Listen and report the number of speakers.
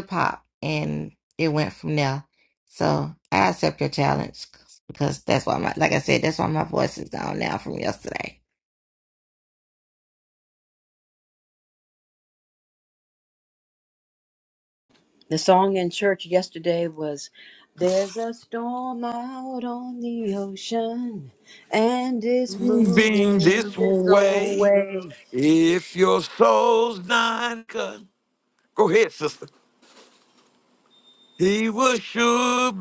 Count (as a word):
three